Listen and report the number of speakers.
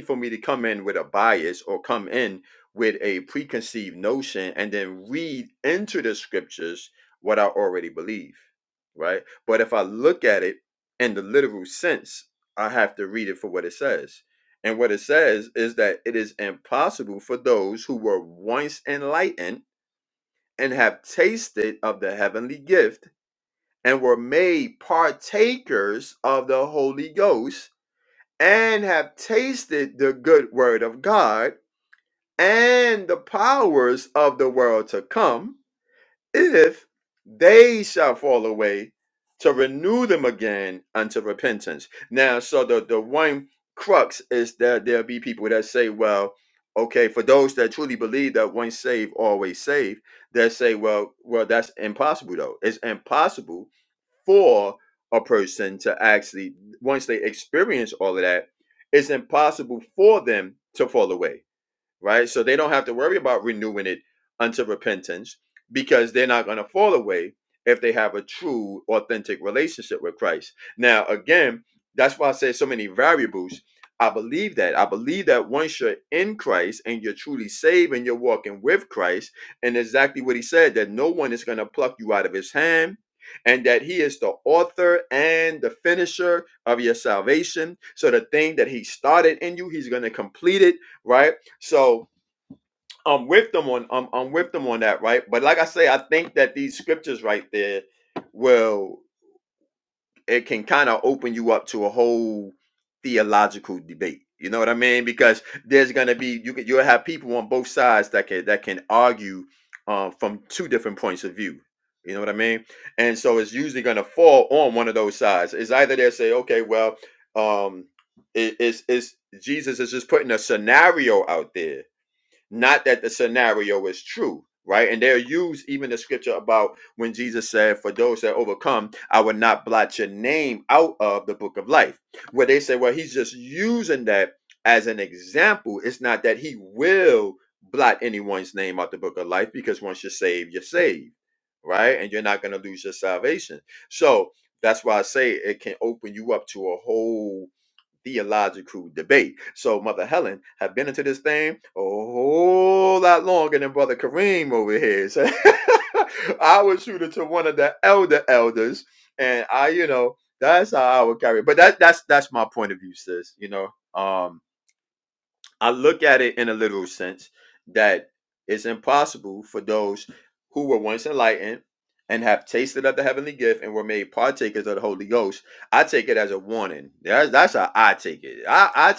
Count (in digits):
1